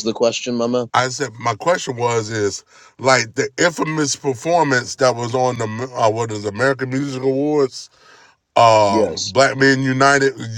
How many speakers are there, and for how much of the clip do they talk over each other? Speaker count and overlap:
two, about 4%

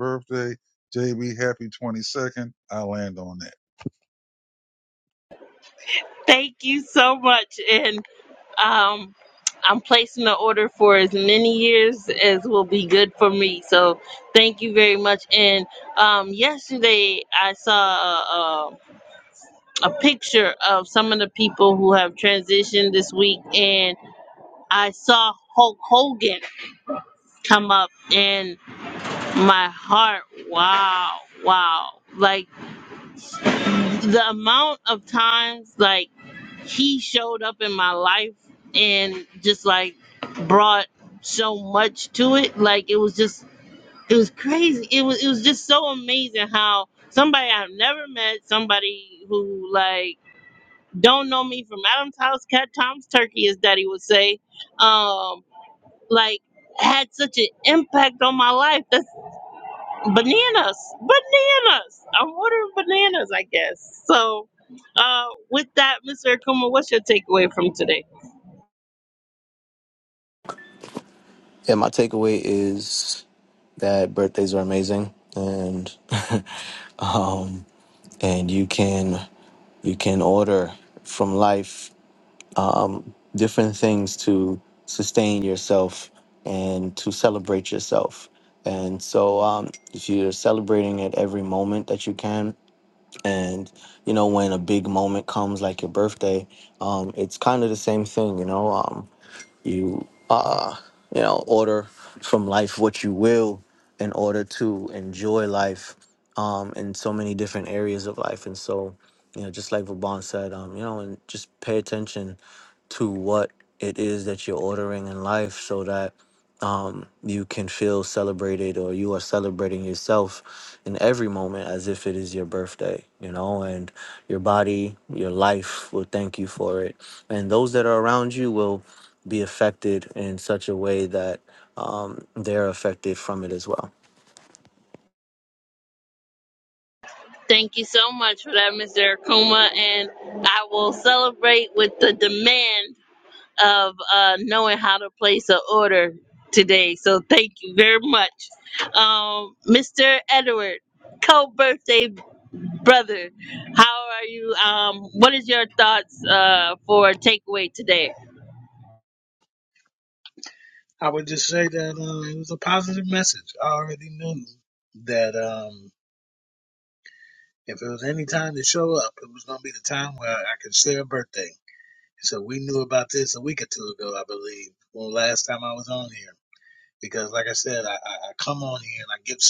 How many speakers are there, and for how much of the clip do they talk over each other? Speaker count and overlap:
four, no overlap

